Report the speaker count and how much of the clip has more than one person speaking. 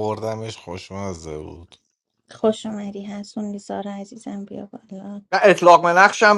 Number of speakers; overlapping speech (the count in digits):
3, no overlap